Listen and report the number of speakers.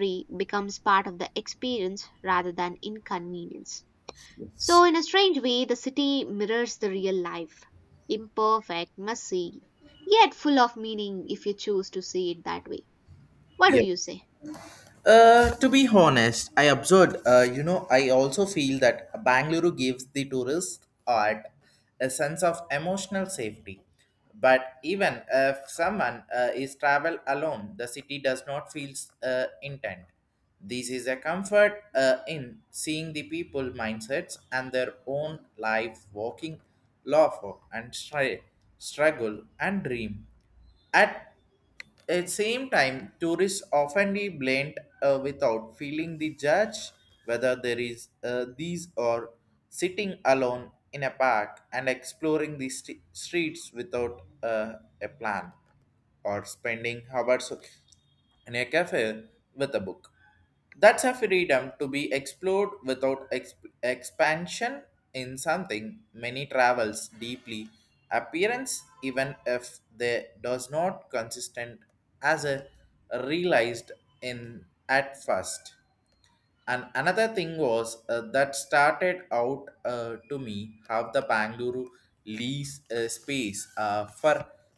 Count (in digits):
2